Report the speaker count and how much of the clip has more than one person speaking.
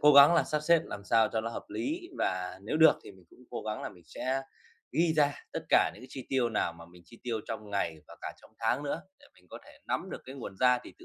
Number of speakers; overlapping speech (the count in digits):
1, no overlap